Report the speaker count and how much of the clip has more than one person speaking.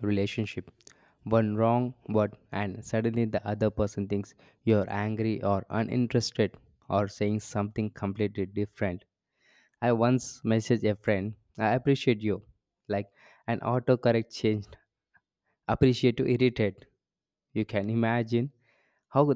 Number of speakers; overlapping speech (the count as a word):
one, no overlap